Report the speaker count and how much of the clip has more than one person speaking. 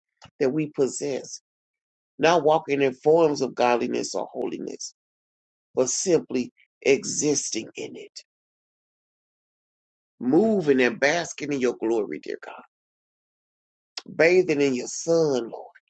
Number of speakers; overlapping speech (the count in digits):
1, no overlap